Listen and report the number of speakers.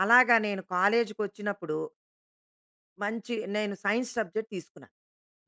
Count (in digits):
1